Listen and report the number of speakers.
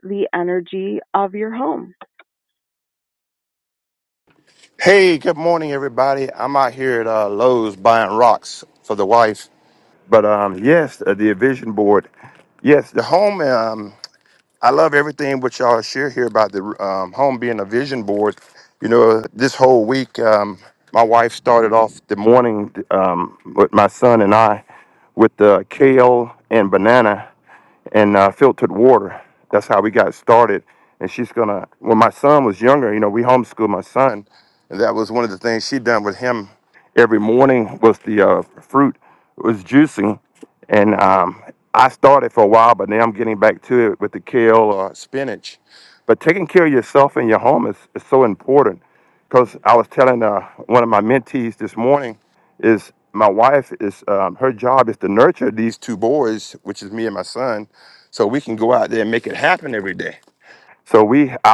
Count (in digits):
2